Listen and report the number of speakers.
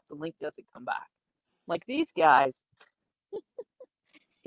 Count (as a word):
one